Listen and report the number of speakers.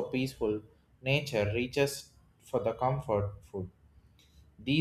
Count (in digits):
1